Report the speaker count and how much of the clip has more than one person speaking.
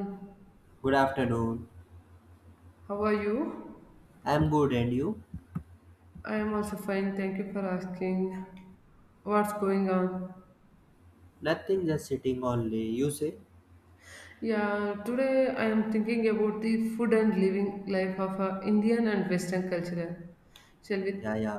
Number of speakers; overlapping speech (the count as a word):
two, no overlap